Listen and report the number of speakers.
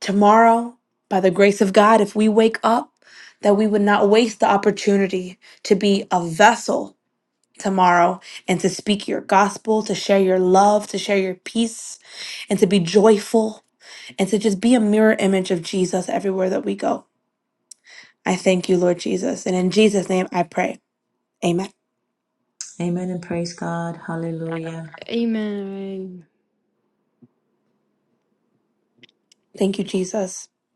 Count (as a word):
three